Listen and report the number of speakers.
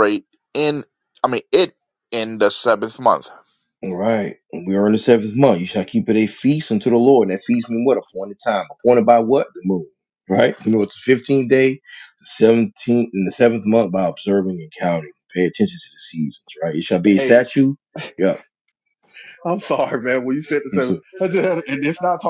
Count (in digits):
3